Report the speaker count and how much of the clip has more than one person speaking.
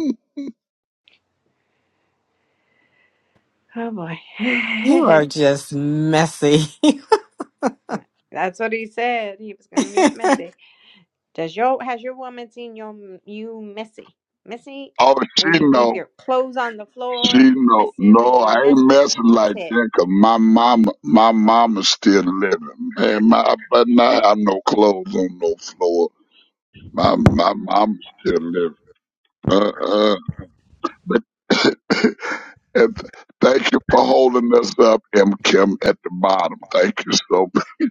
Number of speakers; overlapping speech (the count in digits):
3, about 9%